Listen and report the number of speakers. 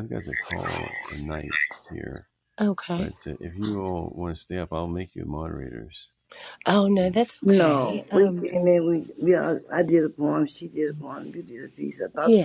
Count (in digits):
3